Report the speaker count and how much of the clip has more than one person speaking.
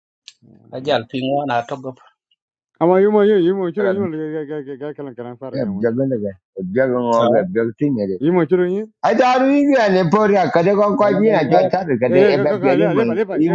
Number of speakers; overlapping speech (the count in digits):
3, about 21%